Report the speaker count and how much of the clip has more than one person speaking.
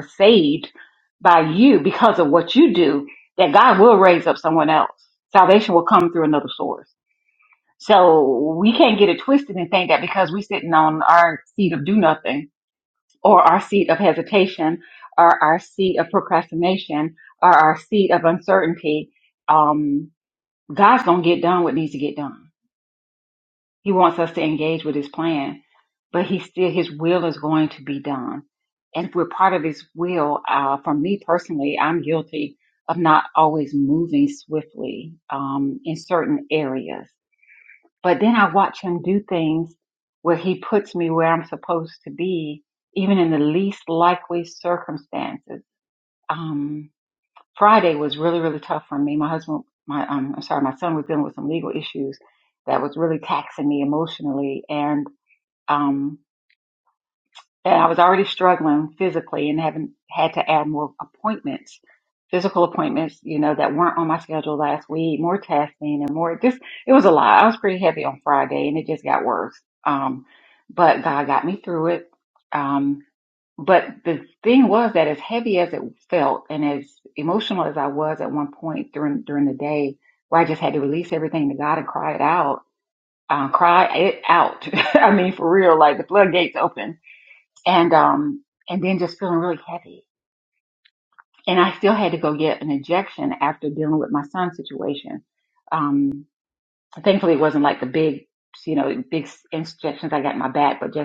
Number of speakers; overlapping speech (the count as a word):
one, no overlap